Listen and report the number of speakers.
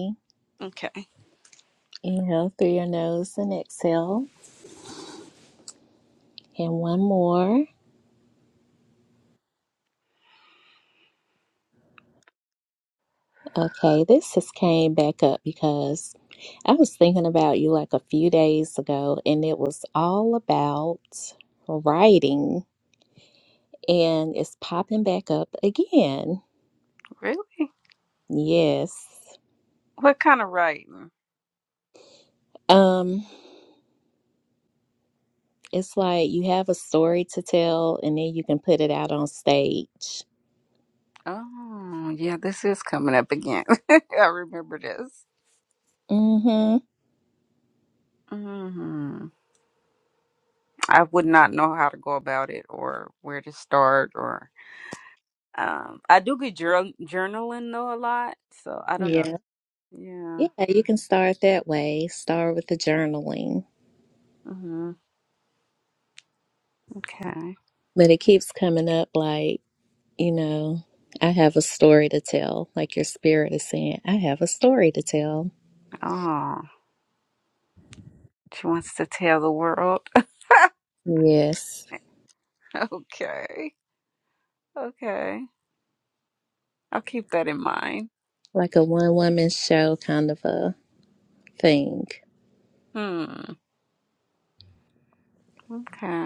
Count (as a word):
two